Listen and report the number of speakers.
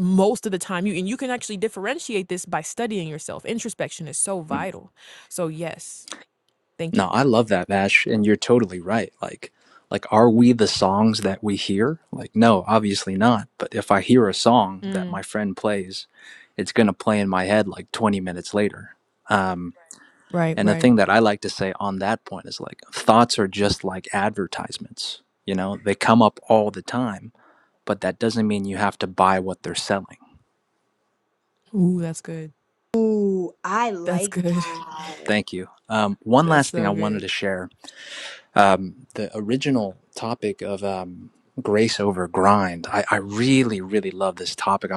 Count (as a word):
three